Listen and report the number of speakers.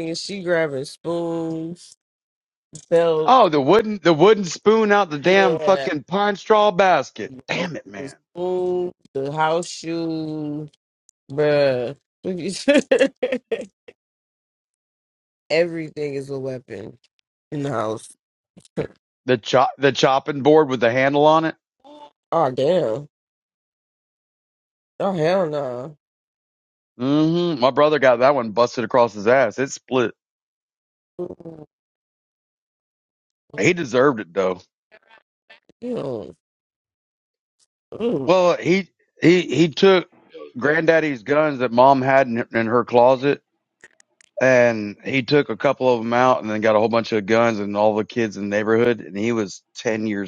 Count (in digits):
2